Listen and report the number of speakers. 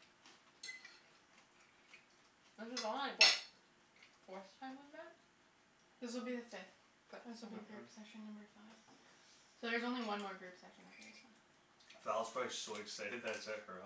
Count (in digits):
3